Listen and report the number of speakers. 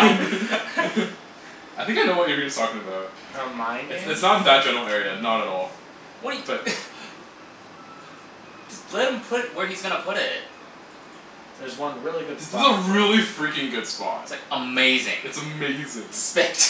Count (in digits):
3